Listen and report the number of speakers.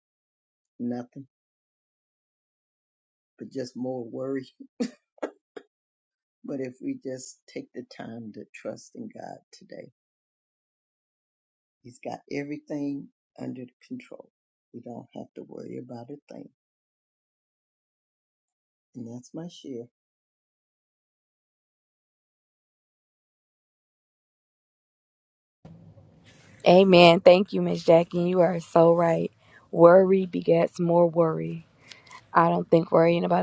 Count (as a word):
two